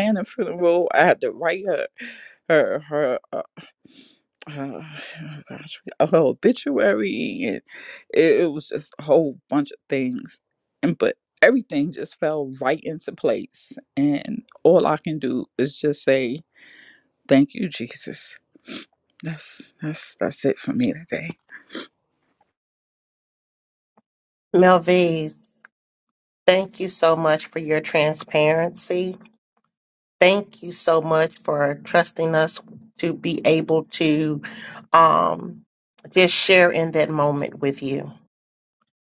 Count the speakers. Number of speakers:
two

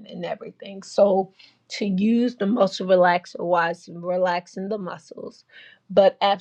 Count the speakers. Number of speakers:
one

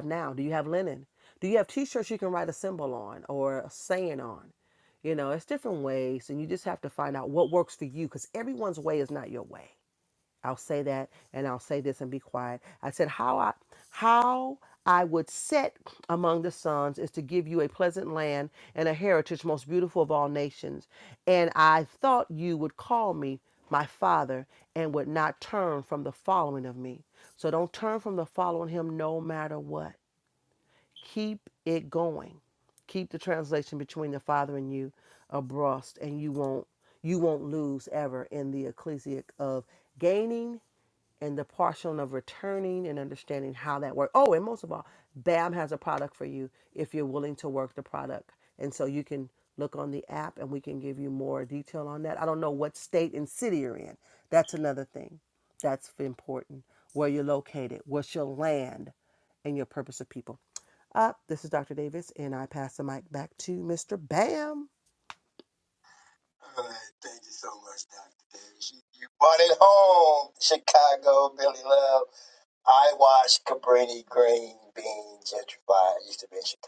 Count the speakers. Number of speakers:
two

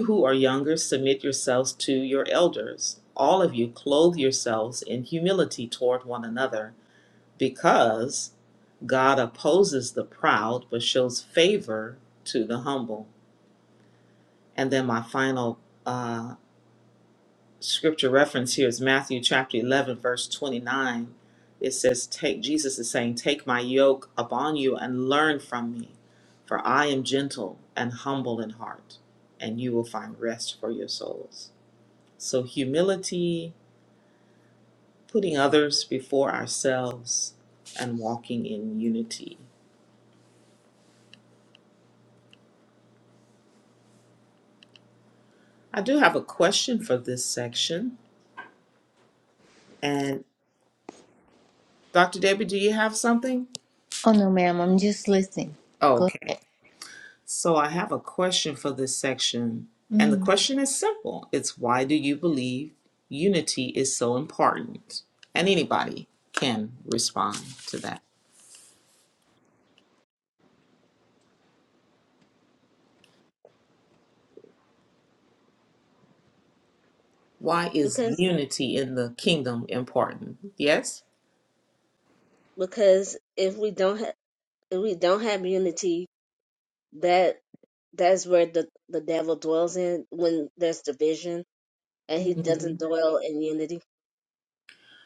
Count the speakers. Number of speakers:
three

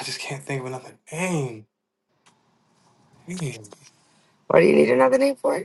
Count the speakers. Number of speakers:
two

